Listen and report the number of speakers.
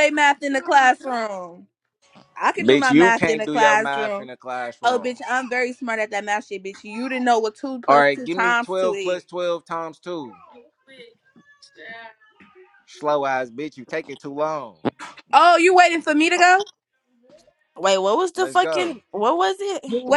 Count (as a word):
three